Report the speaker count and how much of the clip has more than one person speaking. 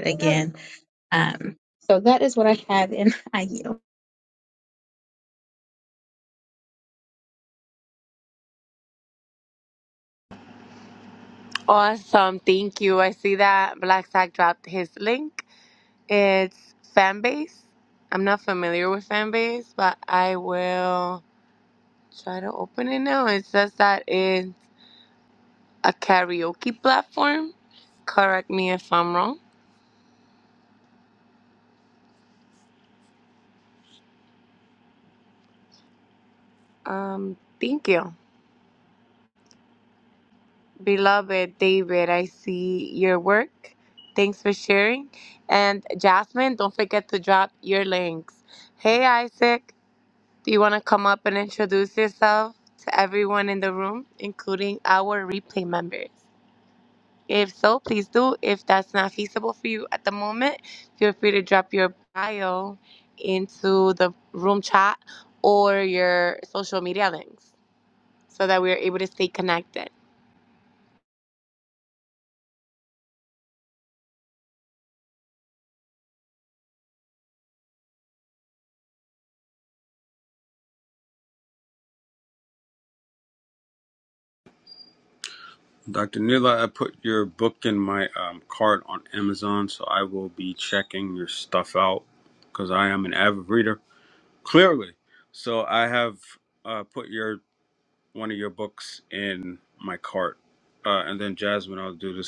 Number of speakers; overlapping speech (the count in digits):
3, no overlap